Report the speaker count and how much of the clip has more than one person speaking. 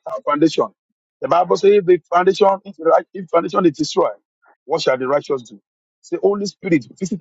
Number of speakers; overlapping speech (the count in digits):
1, no overlap